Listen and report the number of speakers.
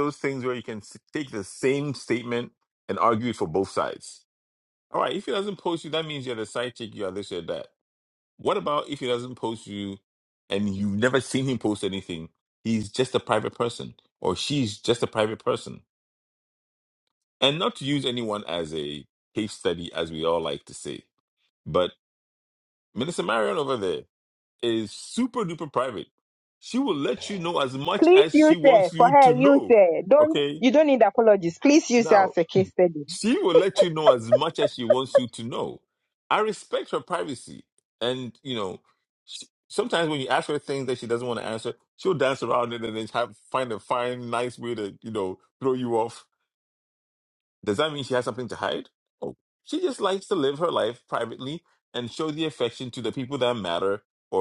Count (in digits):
2